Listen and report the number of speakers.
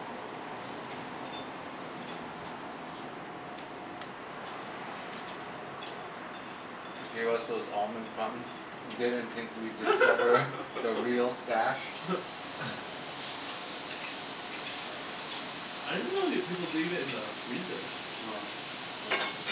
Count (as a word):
two